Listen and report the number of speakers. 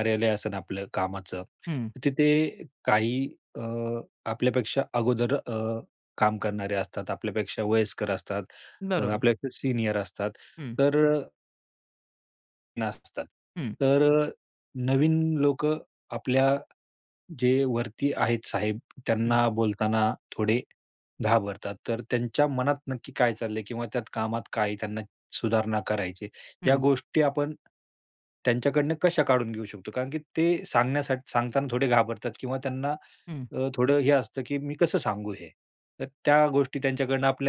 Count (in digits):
2